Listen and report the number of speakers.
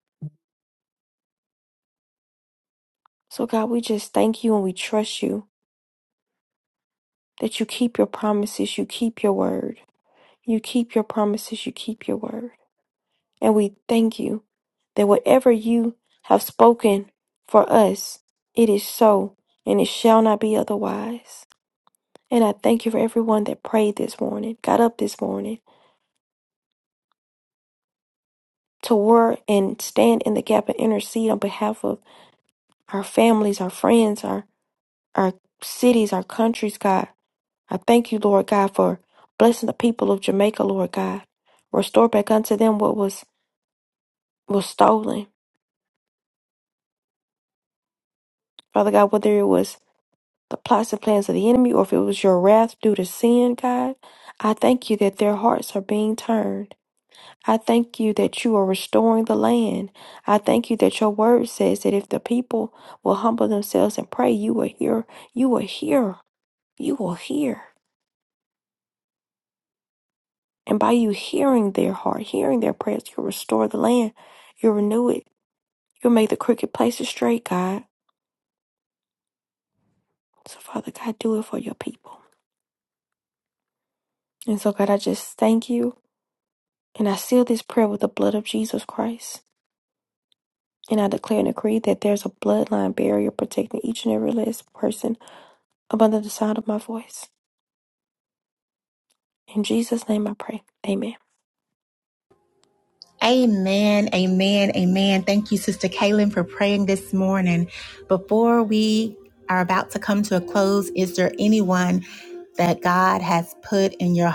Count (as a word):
two